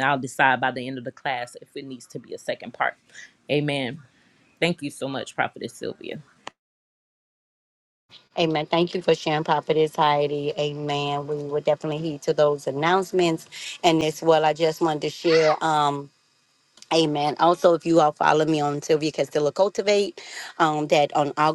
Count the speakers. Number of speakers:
two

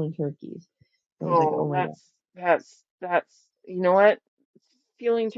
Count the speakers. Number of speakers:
two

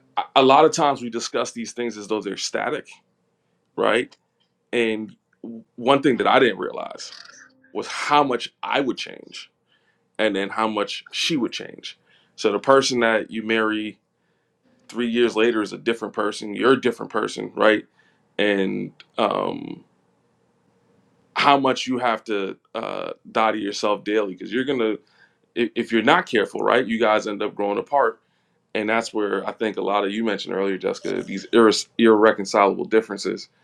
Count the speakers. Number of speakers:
one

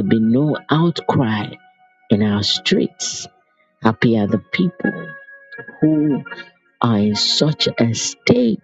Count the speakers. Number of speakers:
one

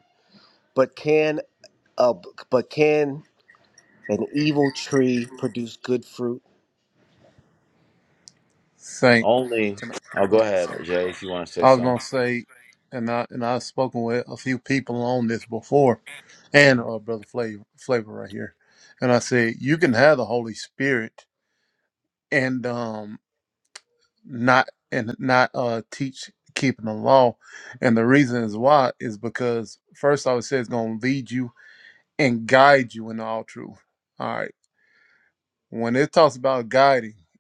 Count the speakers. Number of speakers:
three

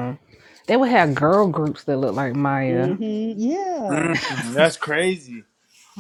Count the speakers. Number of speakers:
three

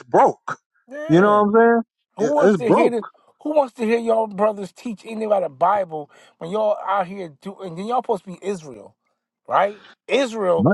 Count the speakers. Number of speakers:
two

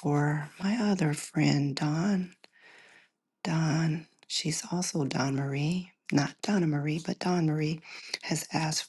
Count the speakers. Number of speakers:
one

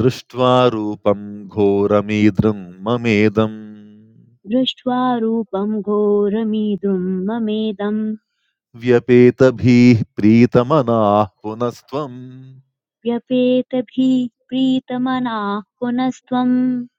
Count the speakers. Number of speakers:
two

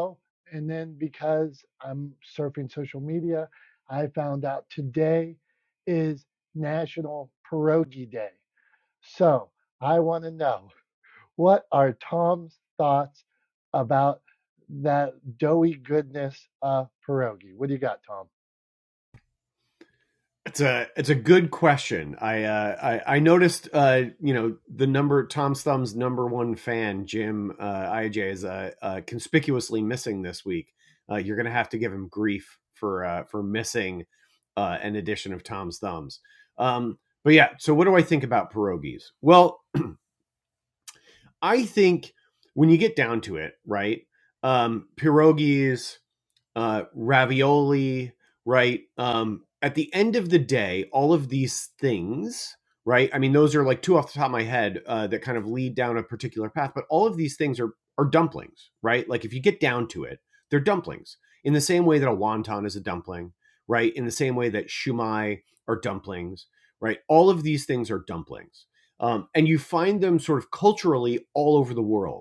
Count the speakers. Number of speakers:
two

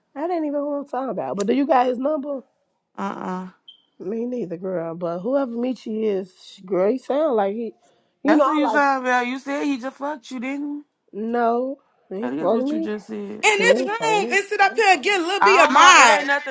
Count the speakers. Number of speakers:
three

